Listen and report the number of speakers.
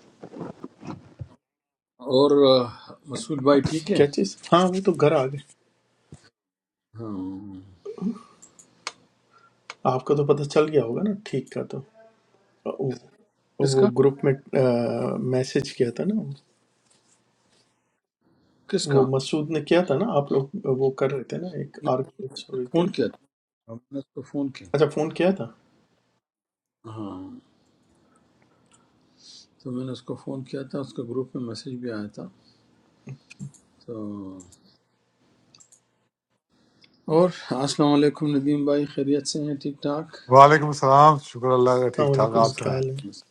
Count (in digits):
3